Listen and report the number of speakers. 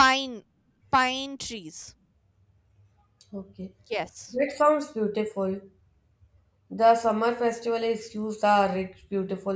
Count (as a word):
two